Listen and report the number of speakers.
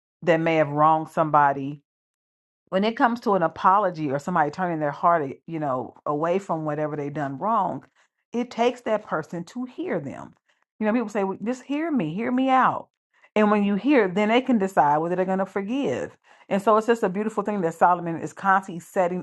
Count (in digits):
1